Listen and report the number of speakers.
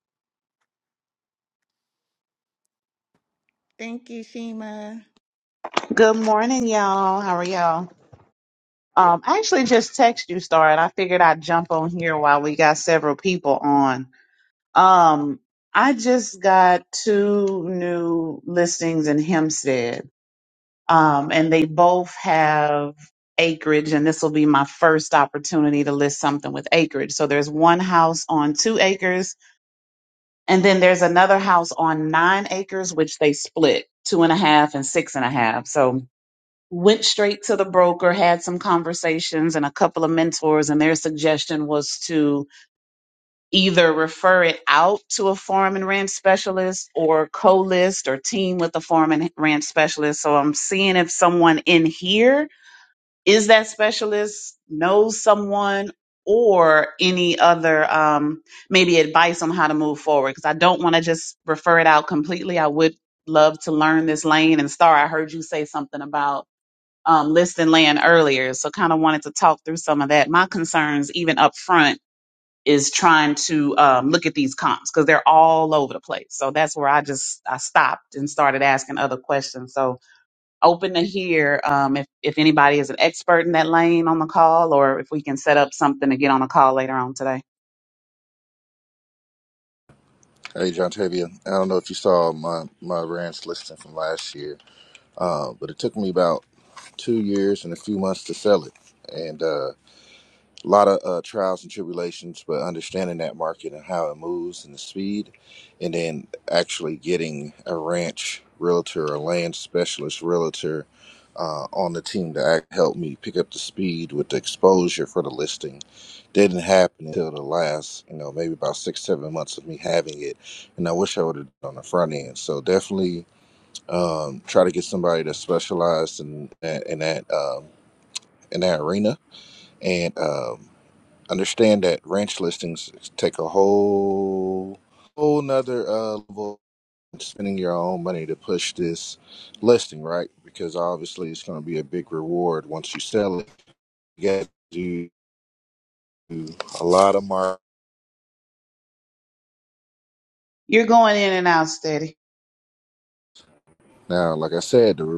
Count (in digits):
3